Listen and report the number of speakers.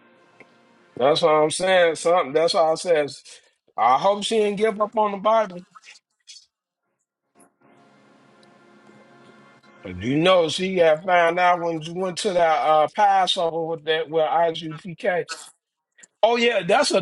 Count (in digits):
1